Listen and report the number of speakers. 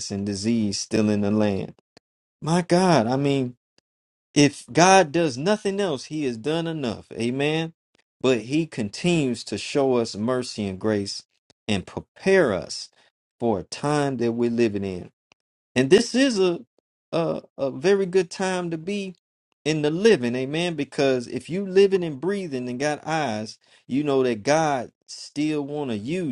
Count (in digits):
1